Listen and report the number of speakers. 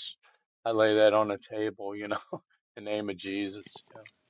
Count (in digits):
1